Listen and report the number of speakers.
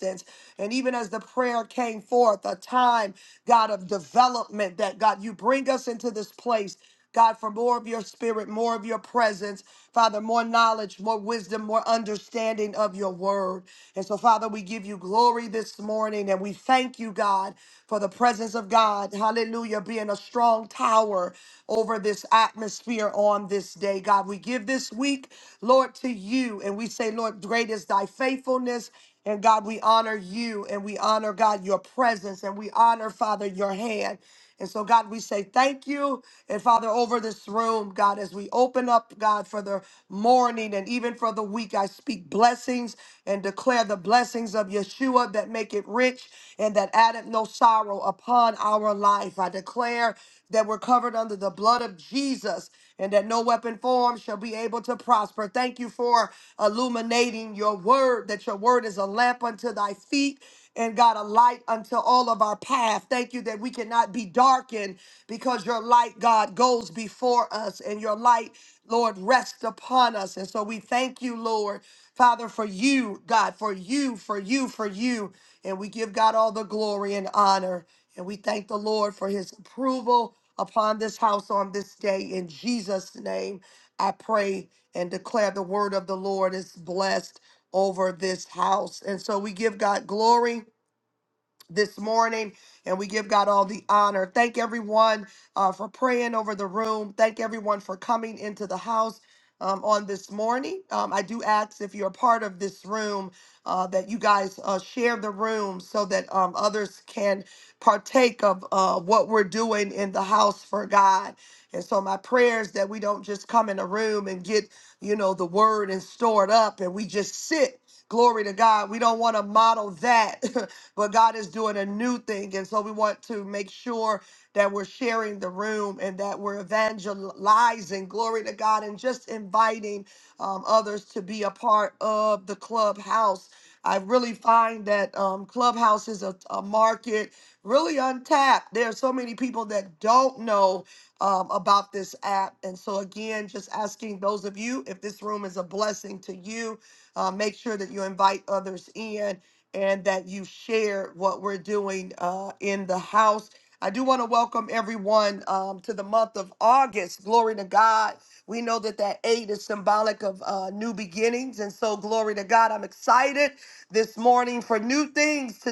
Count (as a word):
one